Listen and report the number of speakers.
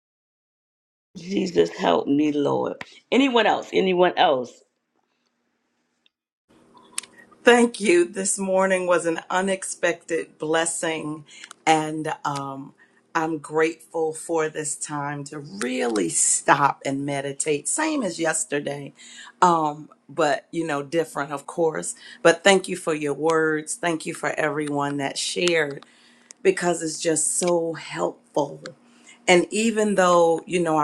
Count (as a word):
two